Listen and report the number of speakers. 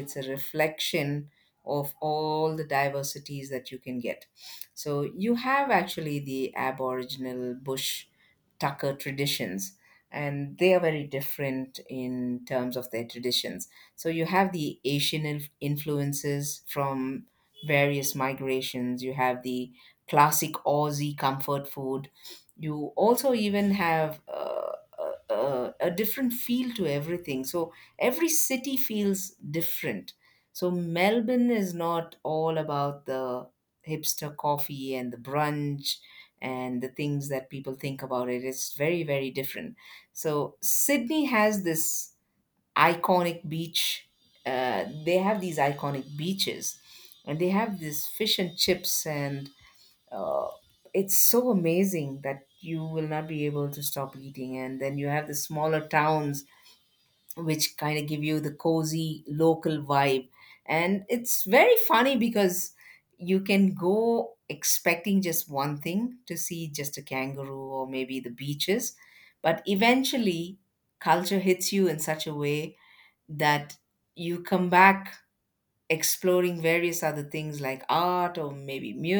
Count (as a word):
one